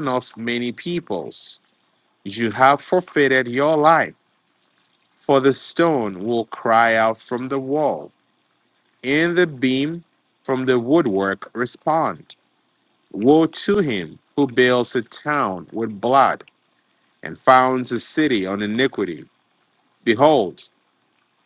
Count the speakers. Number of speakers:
1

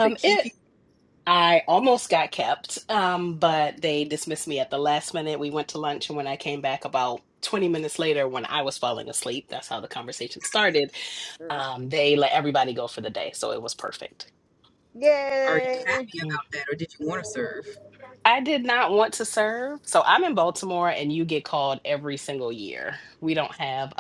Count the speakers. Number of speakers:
3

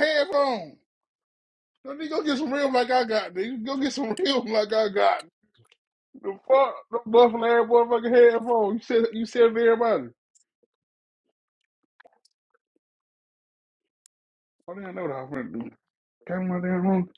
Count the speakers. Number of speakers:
1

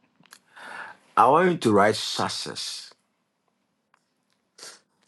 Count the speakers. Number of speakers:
1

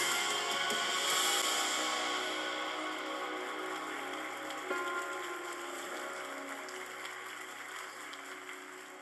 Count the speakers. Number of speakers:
0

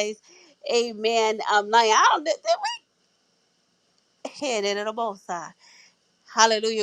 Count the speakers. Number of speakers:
1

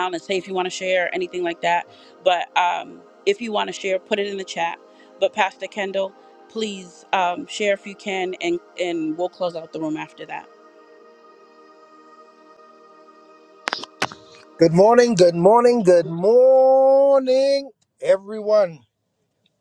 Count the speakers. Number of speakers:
2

